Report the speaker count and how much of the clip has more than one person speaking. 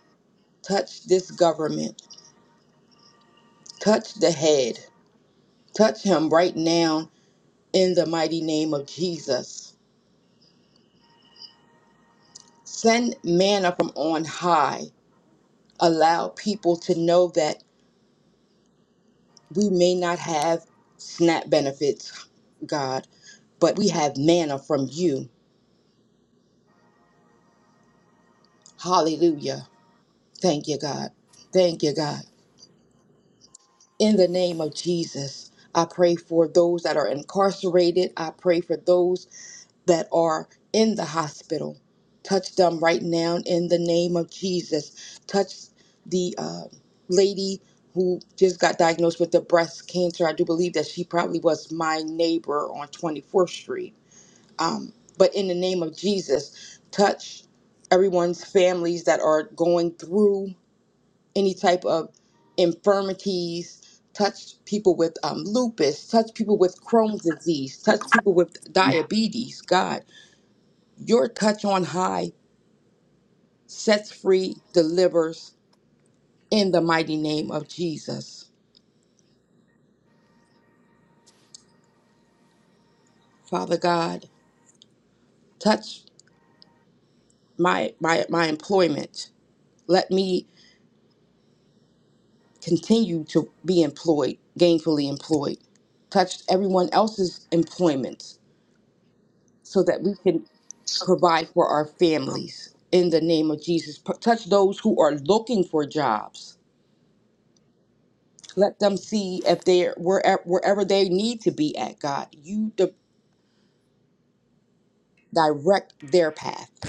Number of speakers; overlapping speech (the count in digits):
1, no overlap